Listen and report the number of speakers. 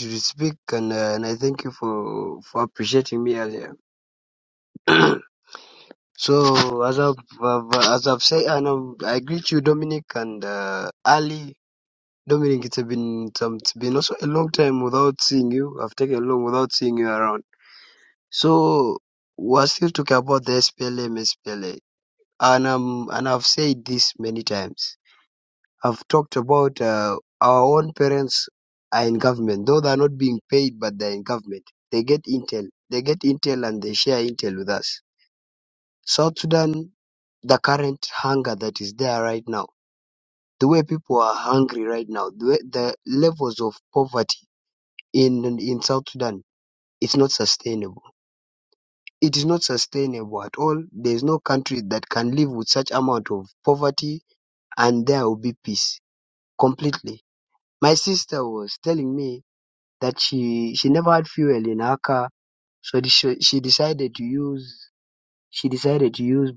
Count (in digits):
1